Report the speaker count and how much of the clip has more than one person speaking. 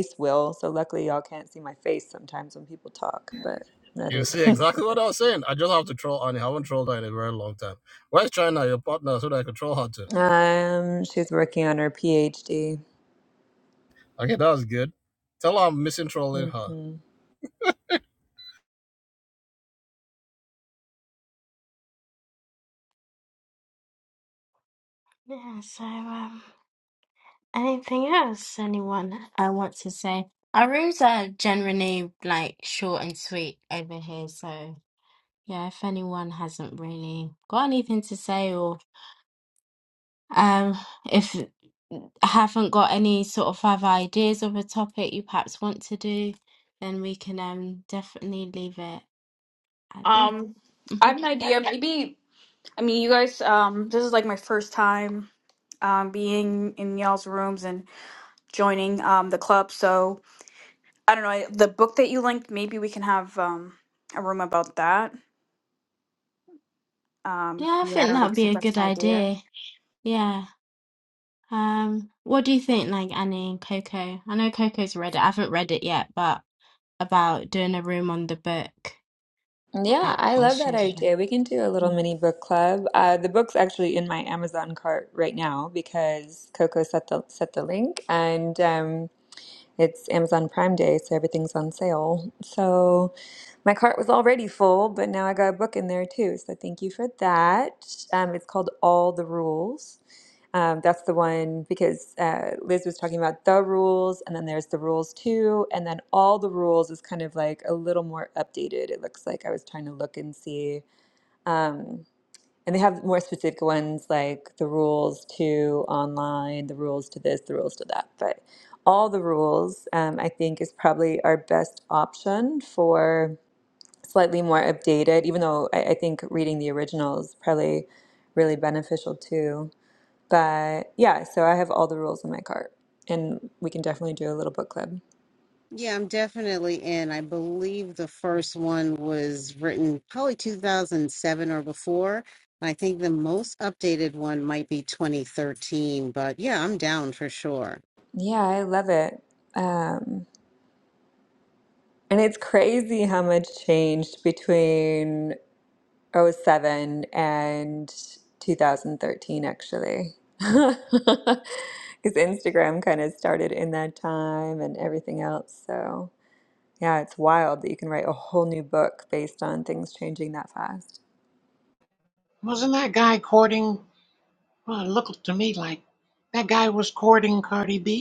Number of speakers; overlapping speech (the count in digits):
6, about 2%